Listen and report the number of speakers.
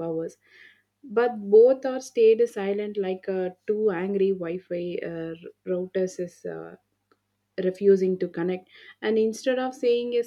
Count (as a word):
one